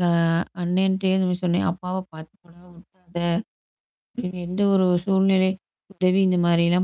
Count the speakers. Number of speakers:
1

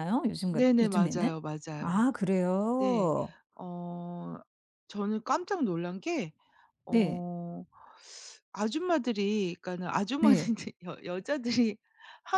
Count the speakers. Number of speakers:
2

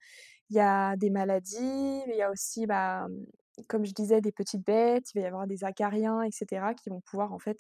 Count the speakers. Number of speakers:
1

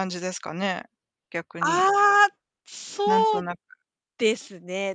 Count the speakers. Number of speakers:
2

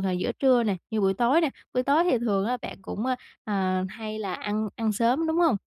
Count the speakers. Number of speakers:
1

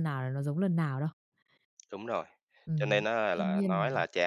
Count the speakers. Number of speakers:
2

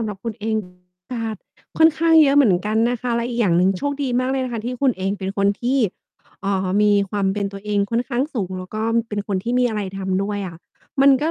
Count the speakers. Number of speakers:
1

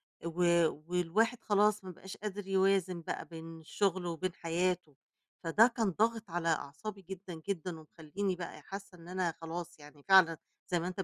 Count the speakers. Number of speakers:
1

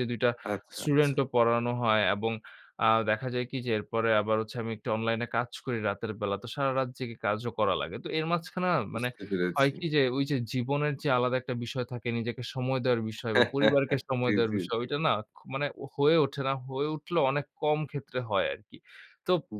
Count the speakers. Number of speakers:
2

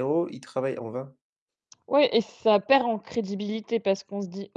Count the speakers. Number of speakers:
2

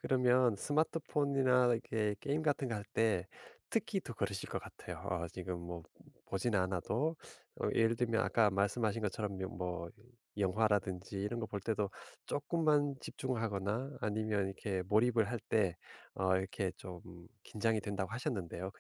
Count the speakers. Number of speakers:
1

